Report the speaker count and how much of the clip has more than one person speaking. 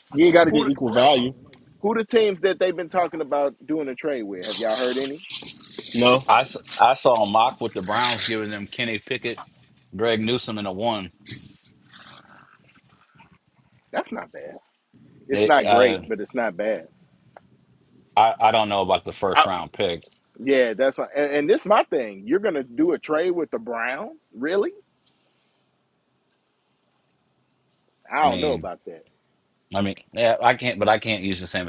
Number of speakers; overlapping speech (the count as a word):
three, about 5%